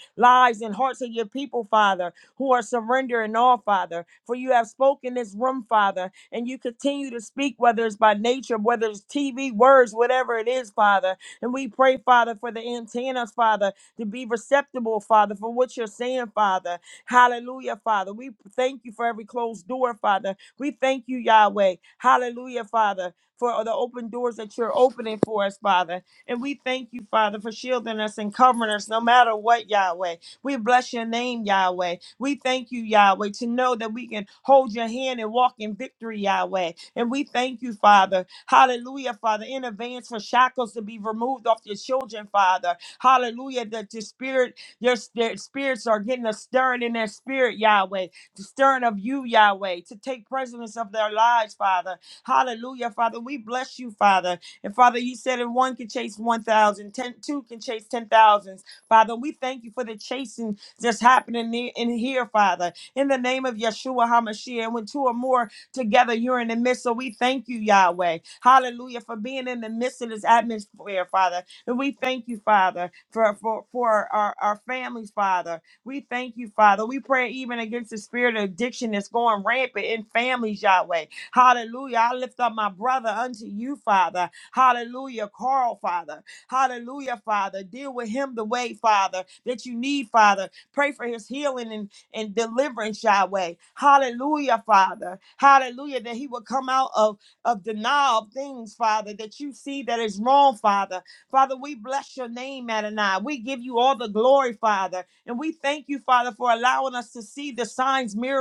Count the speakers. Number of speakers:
1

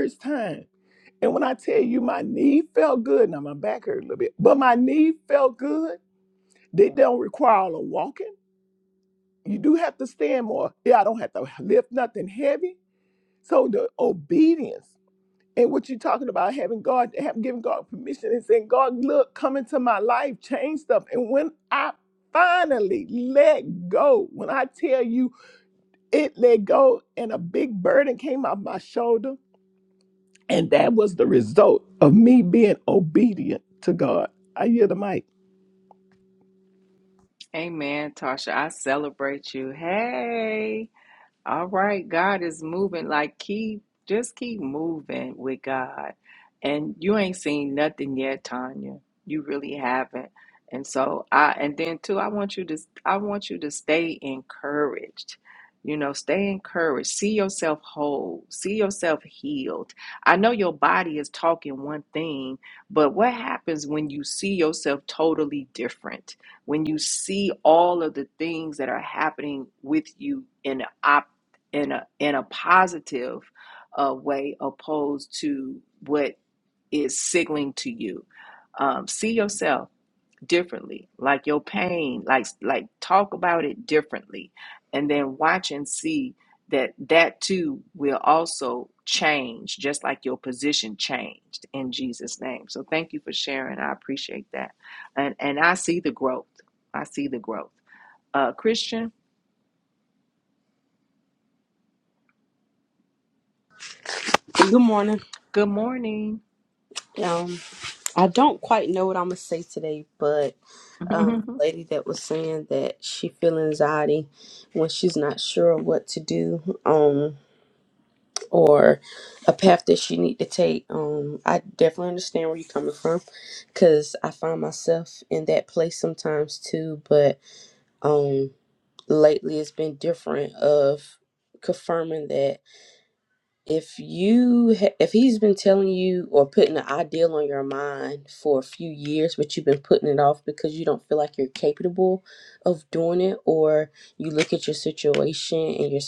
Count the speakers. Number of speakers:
3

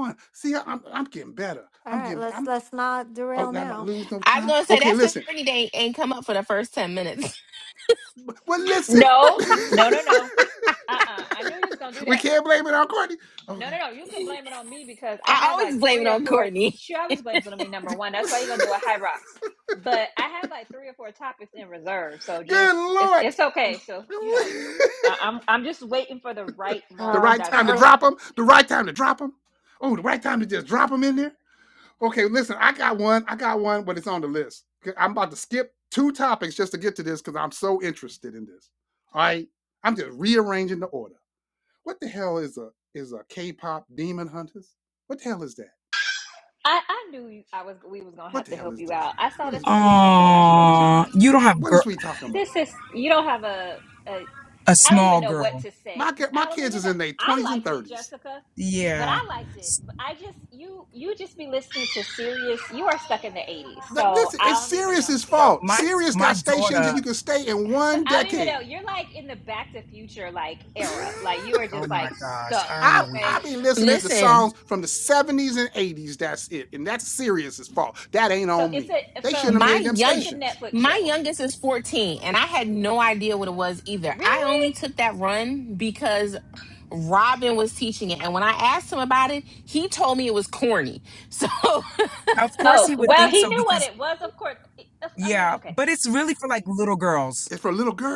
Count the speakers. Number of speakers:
5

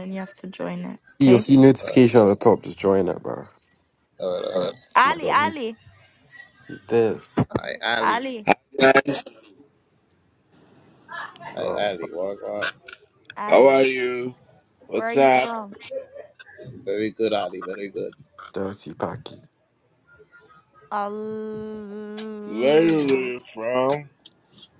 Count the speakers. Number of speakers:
4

